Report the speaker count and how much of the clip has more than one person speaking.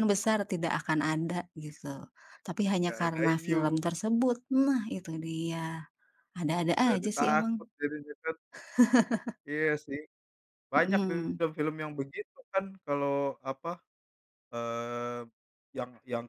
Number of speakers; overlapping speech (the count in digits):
2, about 14%